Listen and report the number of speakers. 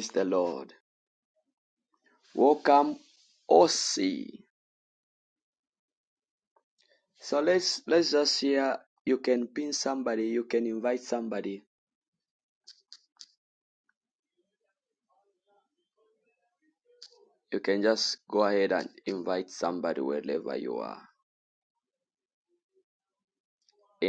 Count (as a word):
one